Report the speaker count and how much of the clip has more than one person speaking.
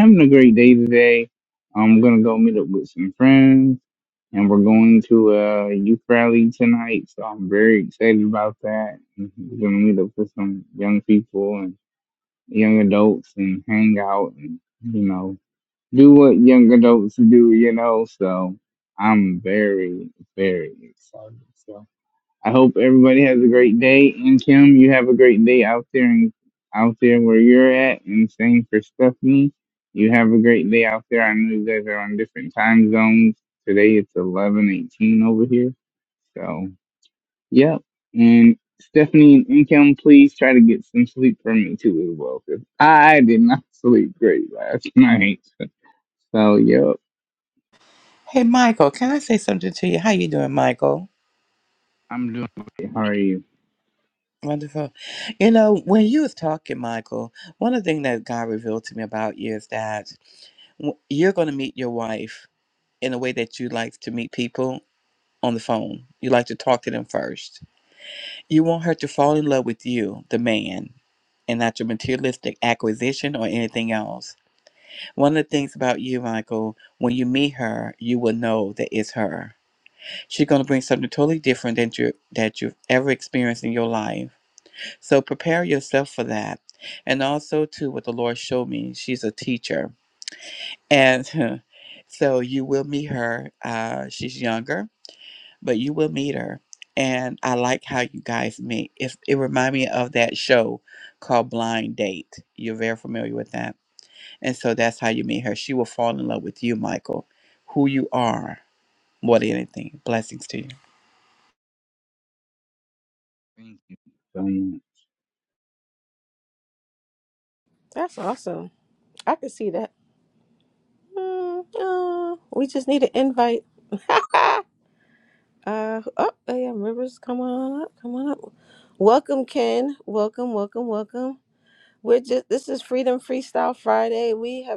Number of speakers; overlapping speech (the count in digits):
3, no overlap